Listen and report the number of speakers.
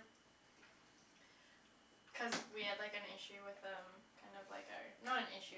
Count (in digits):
1